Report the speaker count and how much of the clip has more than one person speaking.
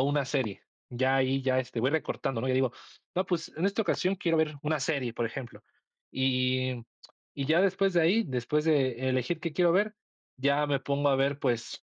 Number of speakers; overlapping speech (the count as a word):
one, no overlap